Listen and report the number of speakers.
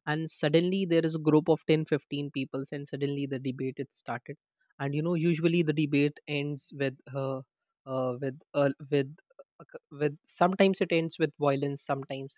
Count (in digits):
1